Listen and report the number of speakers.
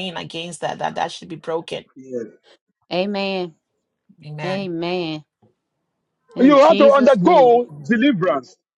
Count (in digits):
3